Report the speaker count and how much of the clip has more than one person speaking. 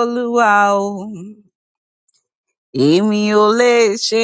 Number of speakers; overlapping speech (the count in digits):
1, no overlap